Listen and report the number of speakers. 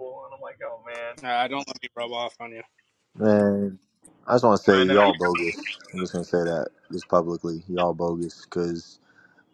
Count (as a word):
three